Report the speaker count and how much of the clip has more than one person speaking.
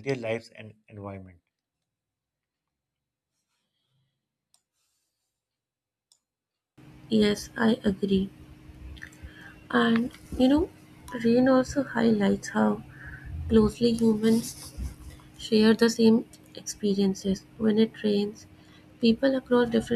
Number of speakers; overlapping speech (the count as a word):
two, no overlap